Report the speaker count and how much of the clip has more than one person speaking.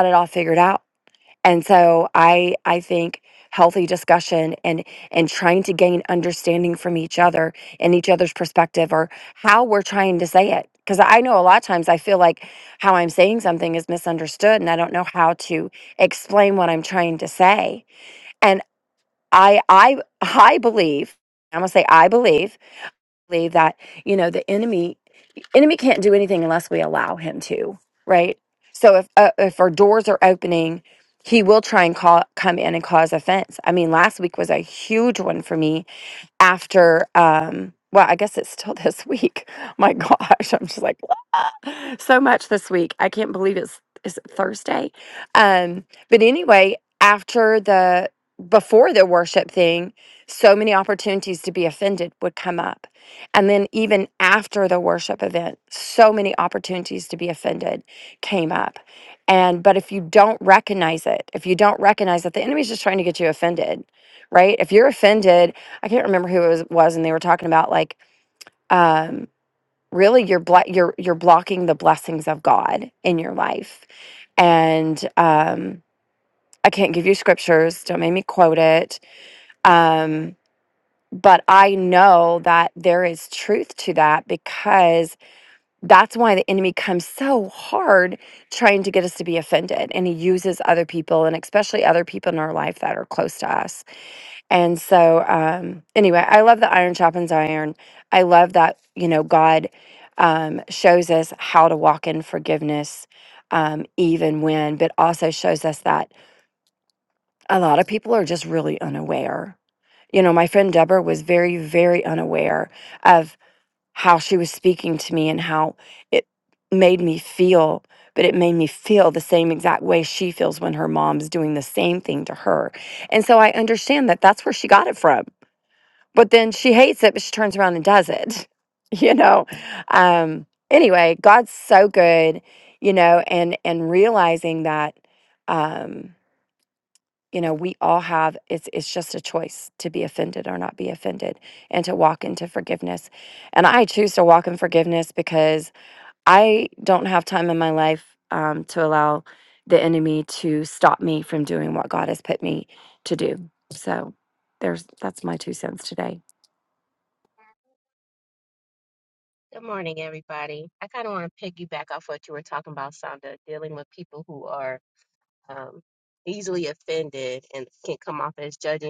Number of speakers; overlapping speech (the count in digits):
2, no overlap